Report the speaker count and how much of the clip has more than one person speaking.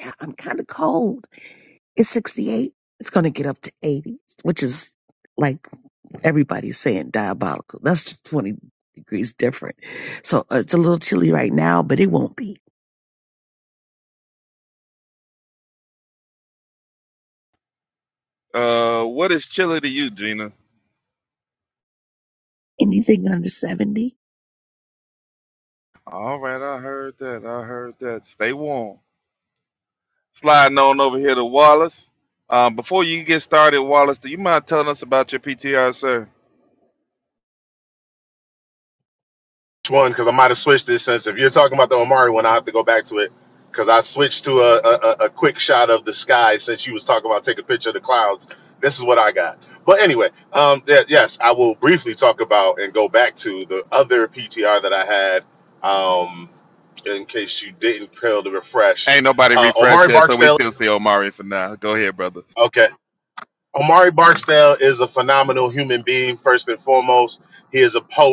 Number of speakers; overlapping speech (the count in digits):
3, about 2%